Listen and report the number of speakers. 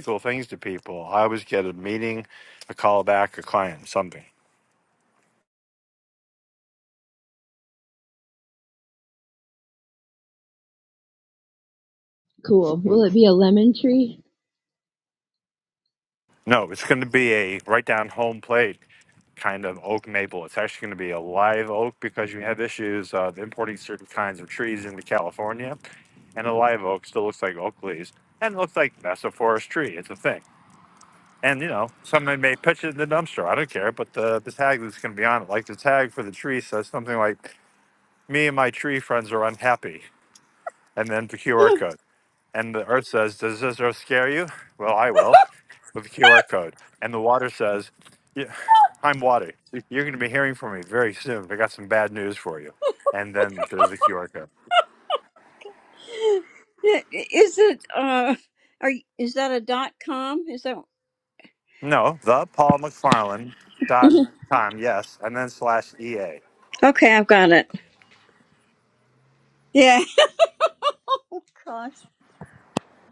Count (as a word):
three